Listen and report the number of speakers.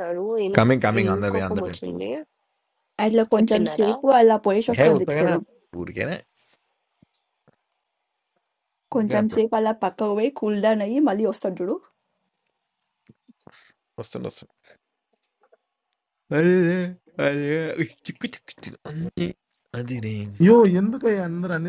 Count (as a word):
four